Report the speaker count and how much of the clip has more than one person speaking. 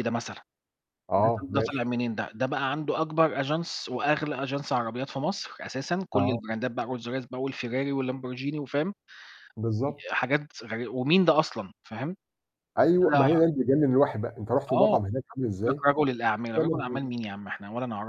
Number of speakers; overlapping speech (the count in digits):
2, about 12%